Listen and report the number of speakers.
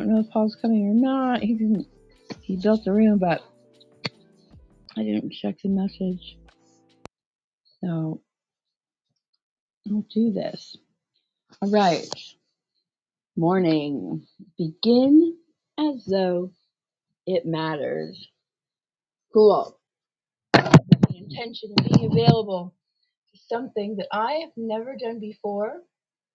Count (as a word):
one